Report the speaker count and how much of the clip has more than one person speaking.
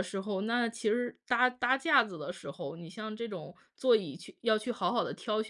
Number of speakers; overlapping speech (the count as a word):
one, no overlap